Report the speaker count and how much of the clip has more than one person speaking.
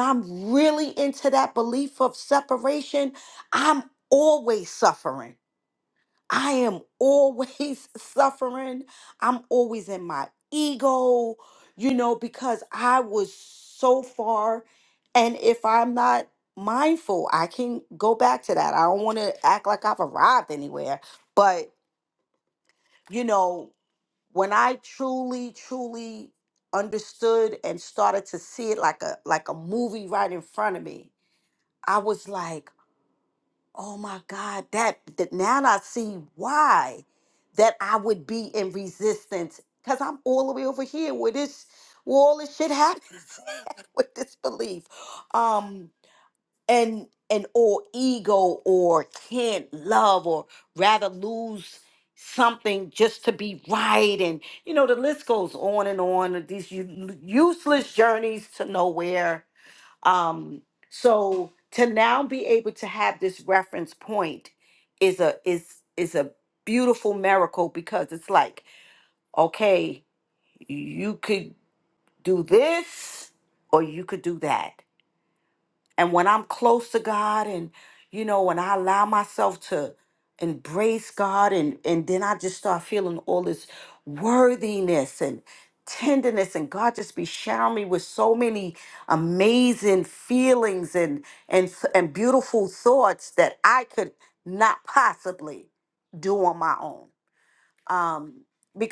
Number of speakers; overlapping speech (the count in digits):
1, no overlap